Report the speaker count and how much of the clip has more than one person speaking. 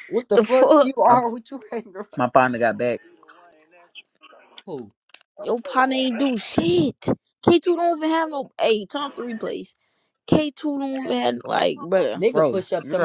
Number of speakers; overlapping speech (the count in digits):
3, about 11%